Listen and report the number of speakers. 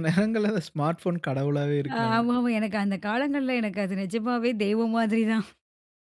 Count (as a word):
two